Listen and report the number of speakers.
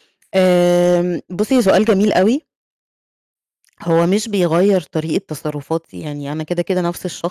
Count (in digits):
1